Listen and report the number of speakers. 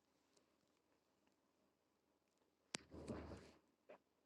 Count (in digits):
0